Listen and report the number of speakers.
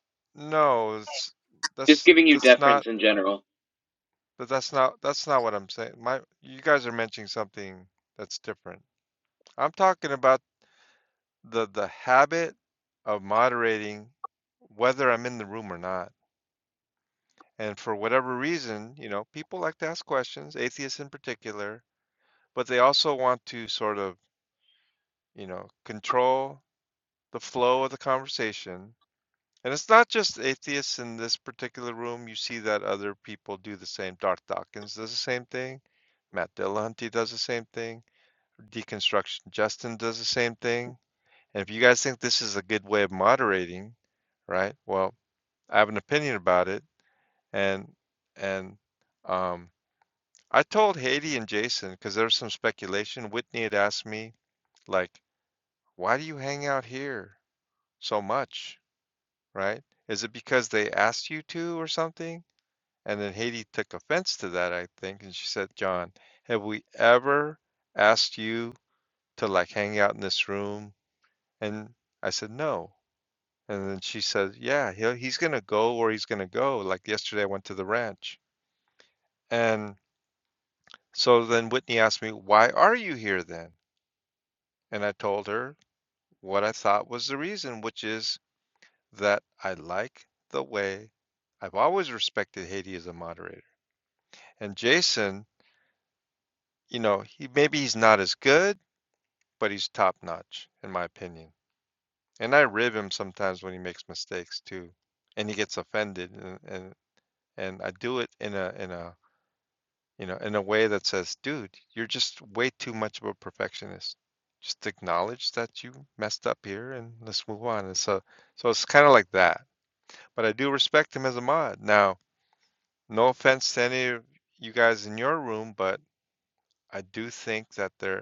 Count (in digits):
2